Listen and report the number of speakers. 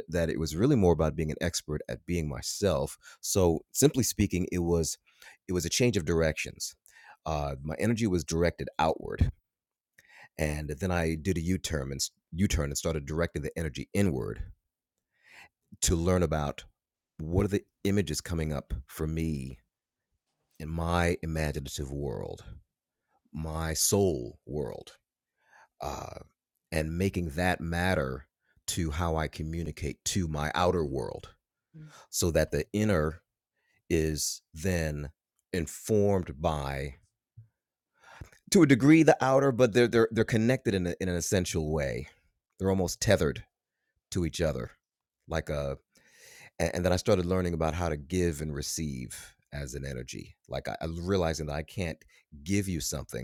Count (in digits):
1